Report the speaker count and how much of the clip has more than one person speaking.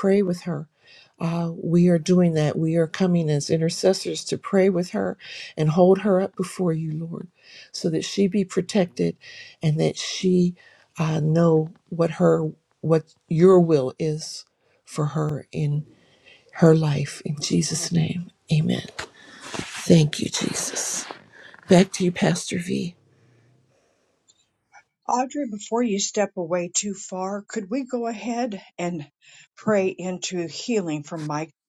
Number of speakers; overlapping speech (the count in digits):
2, no overlap